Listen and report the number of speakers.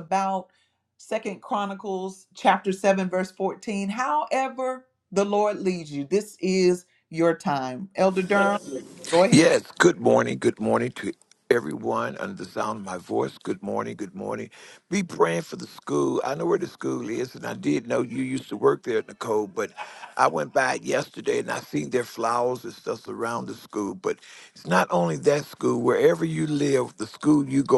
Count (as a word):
two